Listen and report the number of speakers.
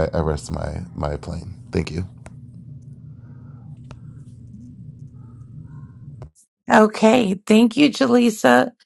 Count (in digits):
2